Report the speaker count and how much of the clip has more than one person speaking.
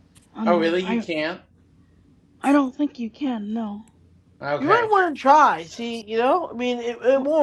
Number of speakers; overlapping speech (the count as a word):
three, about 13%